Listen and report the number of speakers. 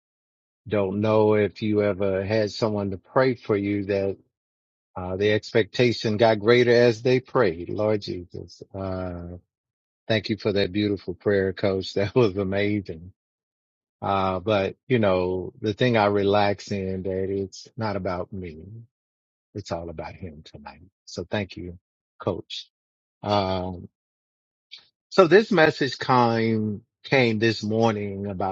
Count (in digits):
1